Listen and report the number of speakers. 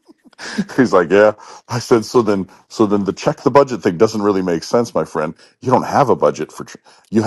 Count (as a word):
one